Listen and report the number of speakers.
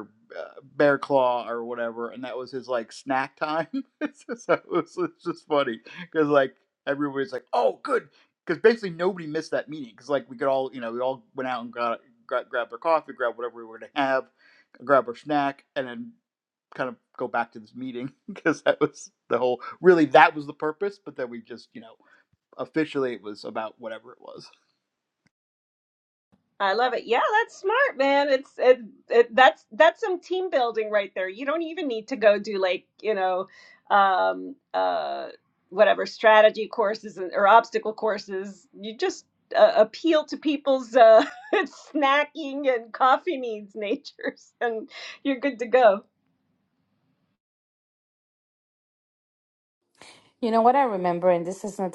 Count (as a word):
three